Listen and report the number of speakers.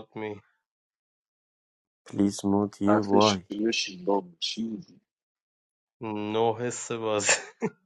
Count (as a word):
three